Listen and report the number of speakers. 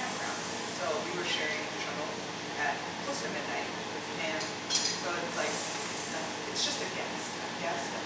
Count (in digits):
1